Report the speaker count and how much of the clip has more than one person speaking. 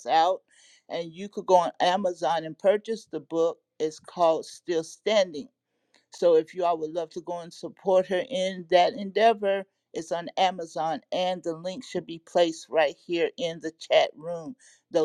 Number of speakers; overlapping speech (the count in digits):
1, no overlap